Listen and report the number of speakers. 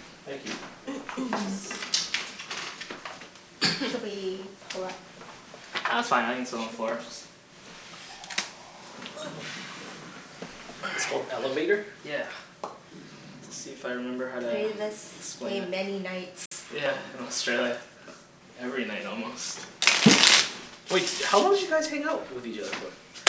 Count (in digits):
3